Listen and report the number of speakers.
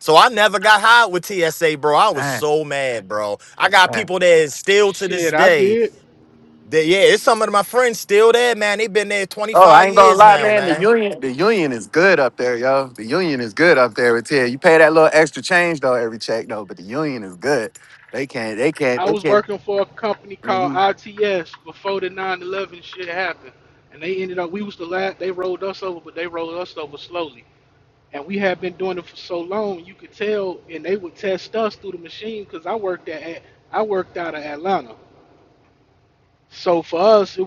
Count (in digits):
3